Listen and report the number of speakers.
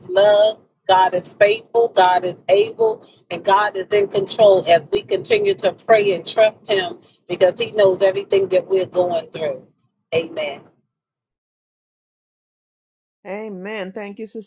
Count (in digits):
2